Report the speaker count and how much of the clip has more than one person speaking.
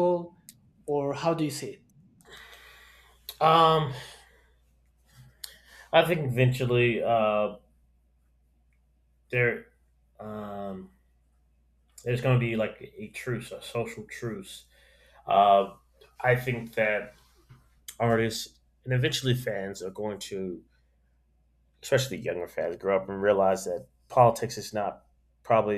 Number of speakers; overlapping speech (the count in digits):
2, no overlap